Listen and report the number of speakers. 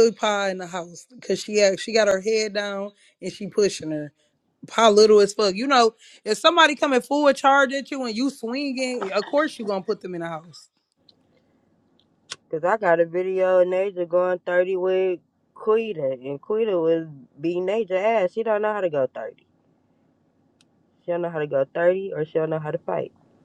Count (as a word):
two